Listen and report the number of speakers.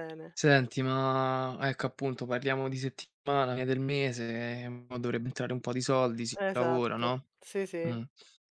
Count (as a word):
two